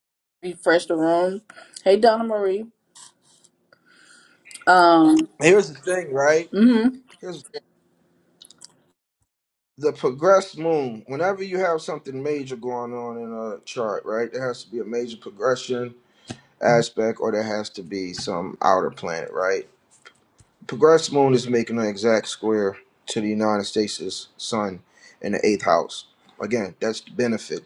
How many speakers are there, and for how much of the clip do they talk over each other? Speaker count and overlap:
two, no overlap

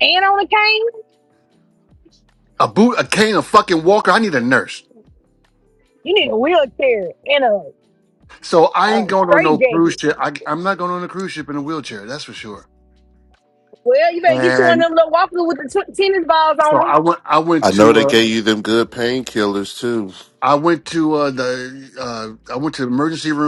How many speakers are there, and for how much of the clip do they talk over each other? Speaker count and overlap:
three, about 11%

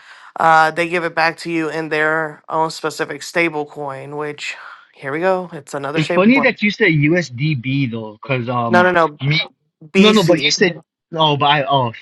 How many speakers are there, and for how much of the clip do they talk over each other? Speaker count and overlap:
two, about 11%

